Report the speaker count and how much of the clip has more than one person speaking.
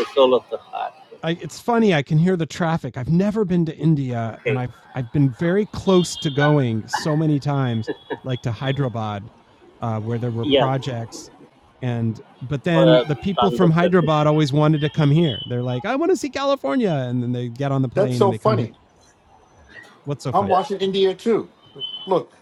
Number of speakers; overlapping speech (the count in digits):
3, about 12%